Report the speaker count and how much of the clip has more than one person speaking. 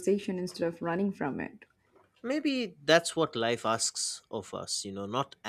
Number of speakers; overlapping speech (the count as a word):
two, no overlap